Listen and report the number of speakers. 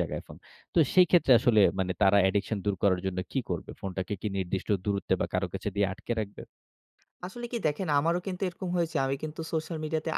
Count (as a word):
two